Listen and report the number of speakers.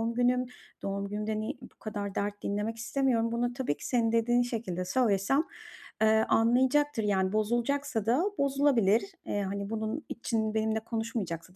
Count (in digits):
1